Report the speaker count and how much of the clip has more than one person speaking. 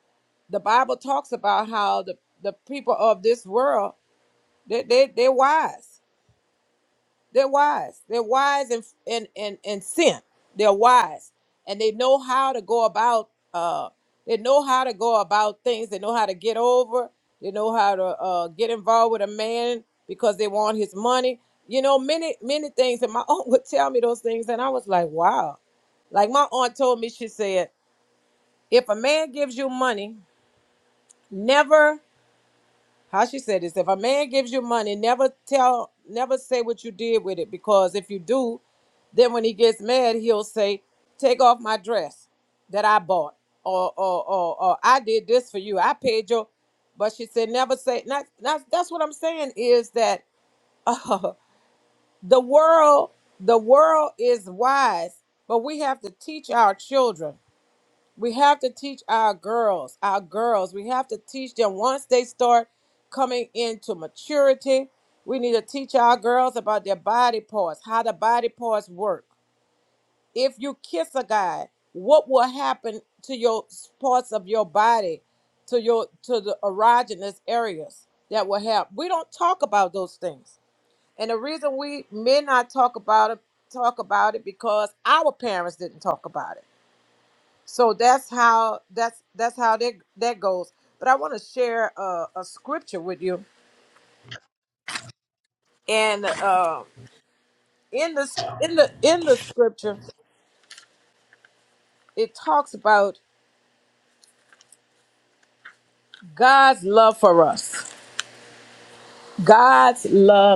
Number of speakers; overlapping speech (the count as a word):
one, no overlap